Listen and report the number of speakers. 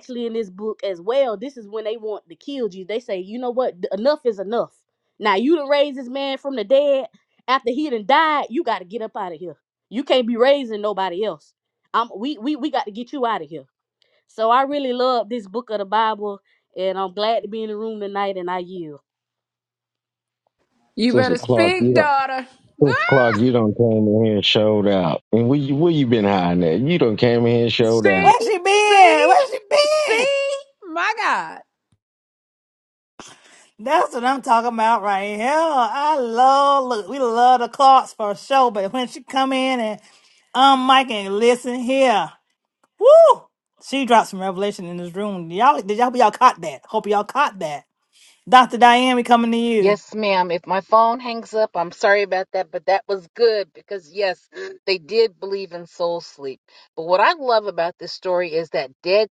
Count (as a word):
five